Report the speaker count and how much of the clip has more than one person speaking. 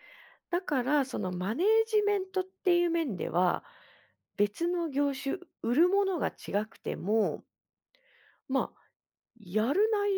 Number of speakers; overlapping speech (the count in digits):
1, no overlap